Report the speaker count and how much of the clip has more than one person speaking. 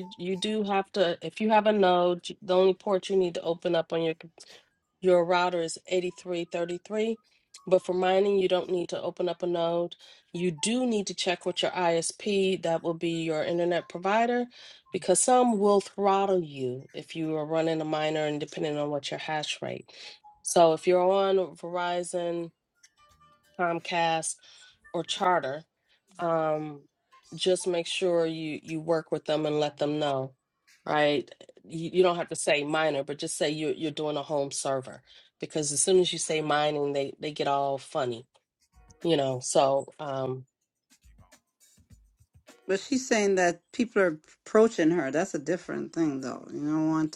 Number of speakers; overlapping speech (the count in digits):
2, no overlap